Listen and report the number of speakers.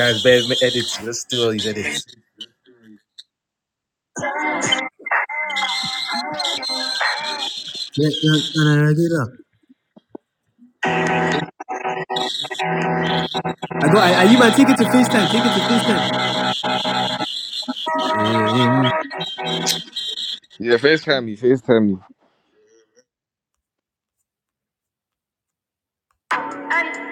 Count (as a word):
three